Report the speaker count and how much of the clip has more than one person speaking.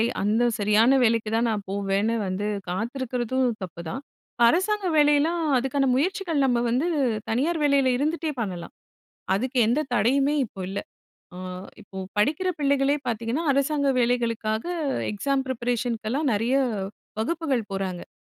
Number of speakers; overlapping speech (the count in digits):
1, no overlap